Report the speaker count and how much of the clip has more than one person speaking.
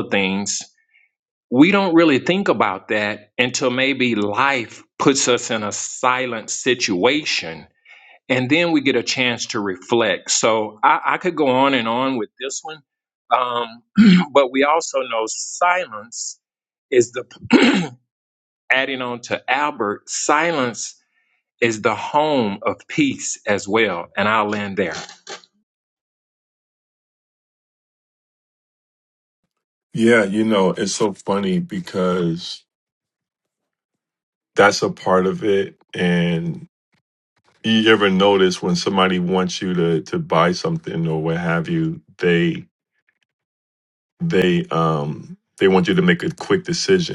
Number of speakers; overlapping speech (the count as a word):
two, no overlap